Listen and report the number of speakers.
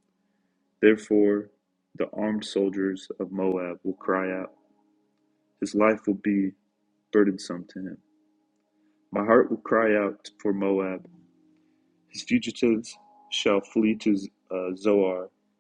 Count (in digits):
1